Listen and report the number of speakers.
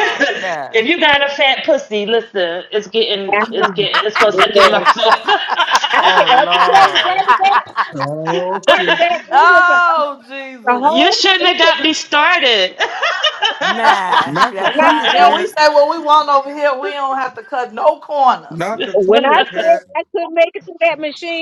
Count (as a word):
five